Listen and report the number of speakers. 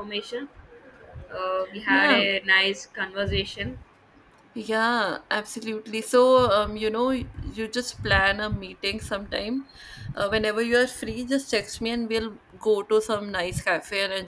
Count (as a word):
two